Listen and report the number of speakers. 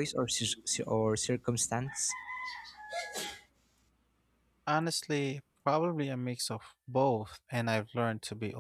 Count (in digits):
2